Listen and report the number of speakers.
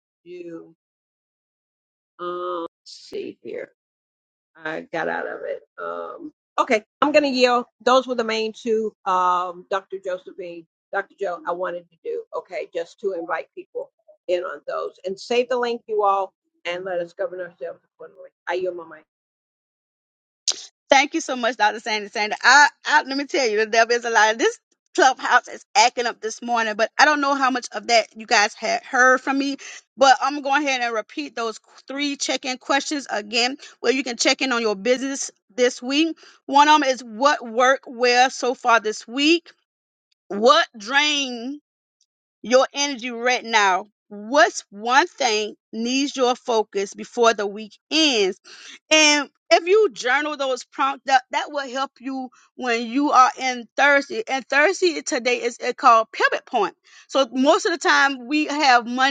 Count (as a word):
two